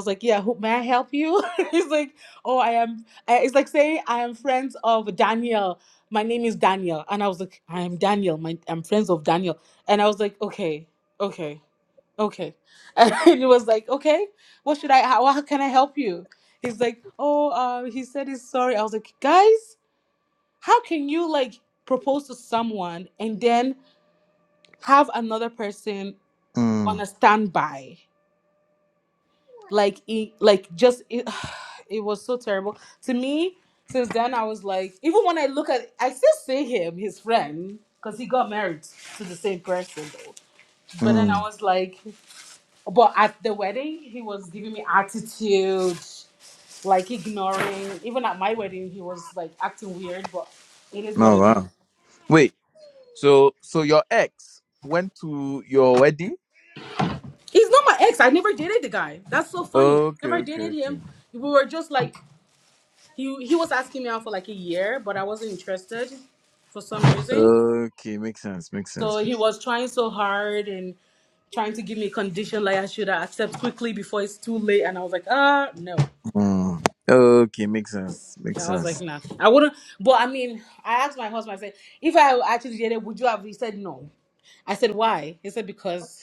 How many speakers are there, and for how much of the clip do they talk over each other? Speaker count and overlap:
2, about 3%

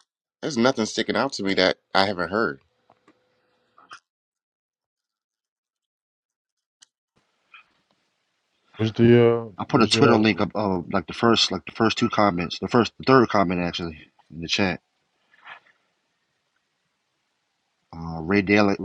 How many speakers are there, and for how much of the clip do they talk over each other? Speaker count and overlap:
3, about 4%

